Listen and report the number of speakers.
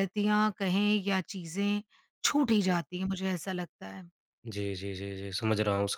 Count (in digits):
2